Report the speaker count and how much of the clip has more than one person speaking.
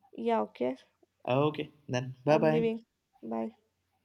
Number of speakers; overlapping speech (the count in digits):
2, about 9%